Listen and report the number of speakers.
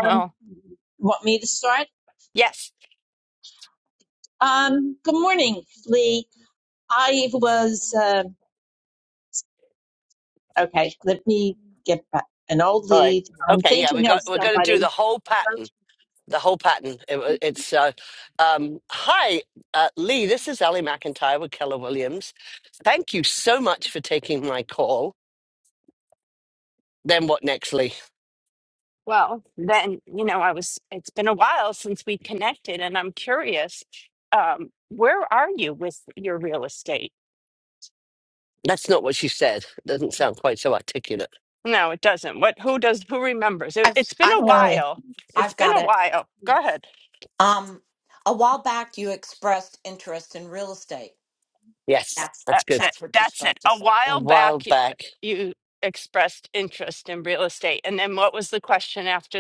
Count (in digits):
4